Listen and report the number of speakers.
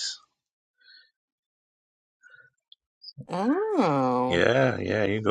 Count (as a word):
two